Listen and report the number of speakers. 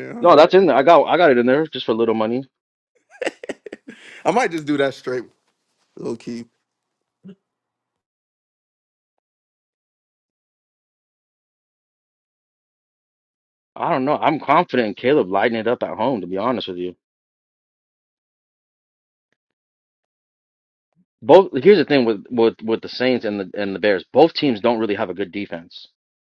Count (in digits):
2